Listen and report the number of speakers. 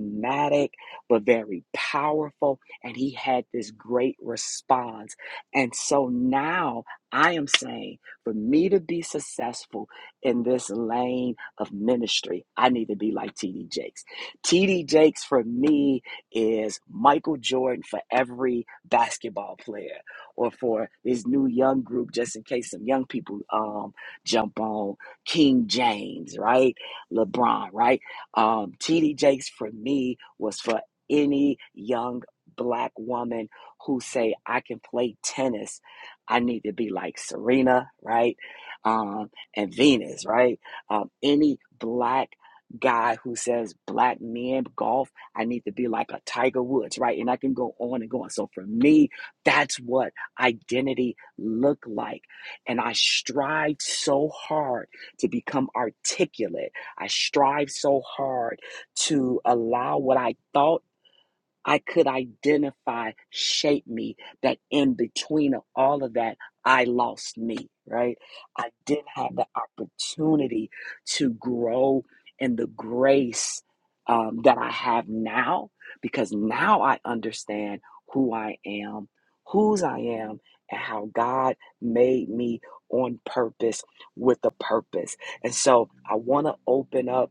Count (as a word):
one